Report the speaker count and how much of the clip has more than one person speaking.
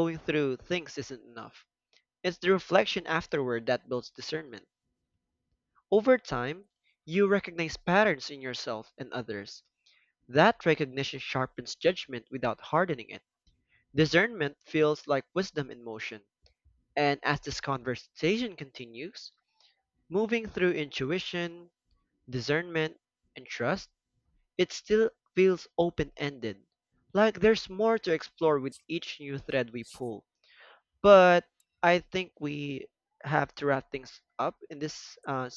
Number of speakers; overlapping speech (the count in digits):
1, no overlap